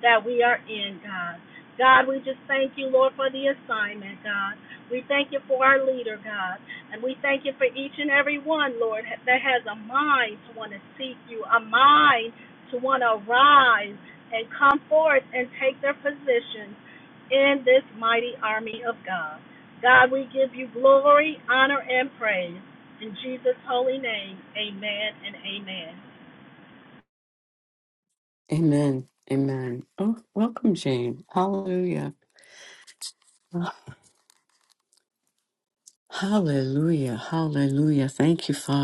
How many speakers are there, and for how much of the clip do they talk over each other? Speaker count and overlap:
two, no overlap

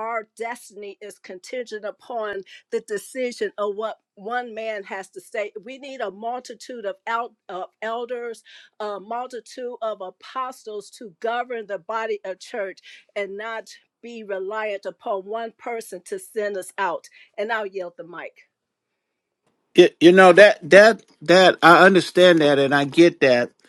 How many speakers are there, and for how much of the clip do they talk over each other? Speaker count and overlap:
two, no overlap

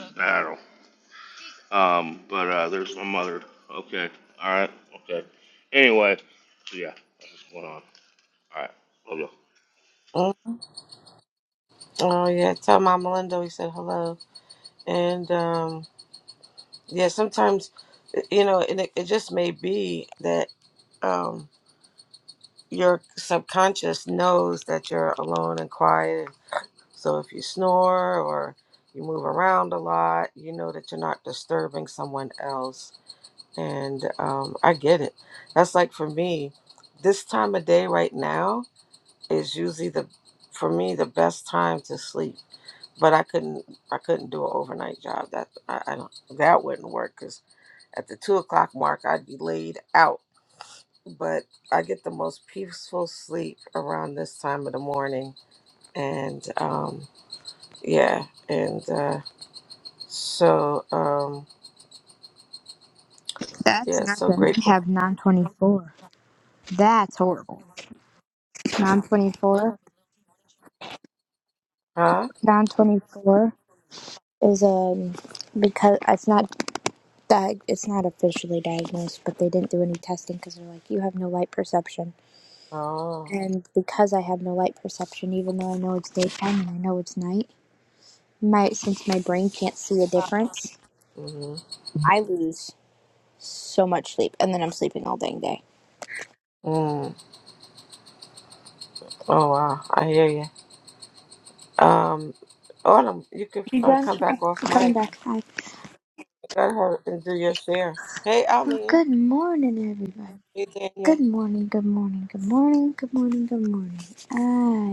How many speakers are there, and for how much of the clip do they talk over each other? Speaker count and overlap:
three, about 2%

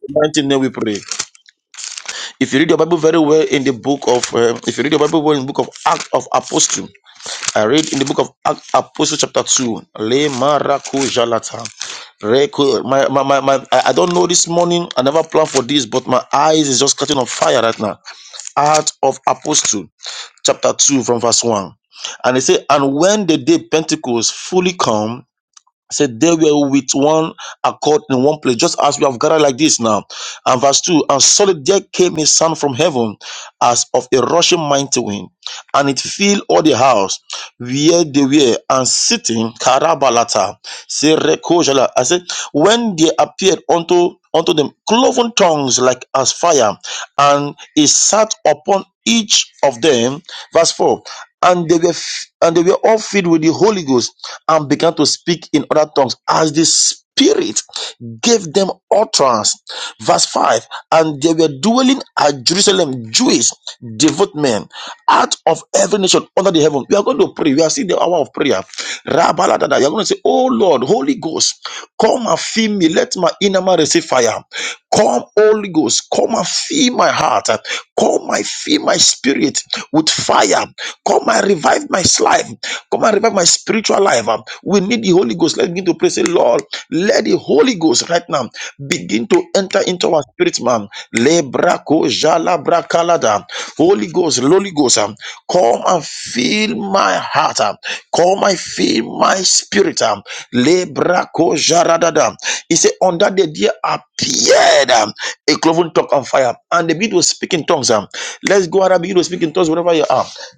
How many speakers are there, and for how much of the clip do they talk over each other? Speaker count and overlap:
one, no overlap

